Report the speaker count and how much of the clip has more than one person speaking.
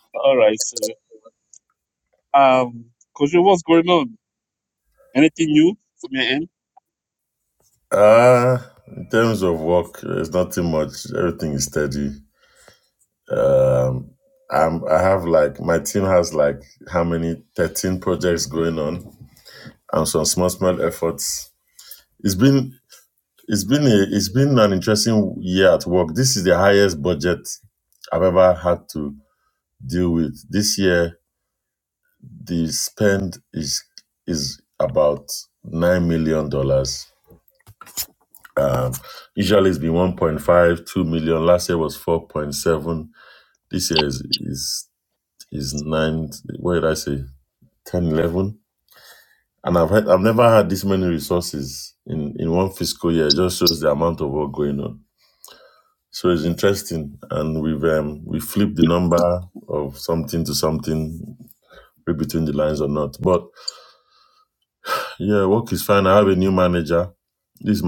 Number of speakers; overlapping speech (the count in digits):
2, no overlap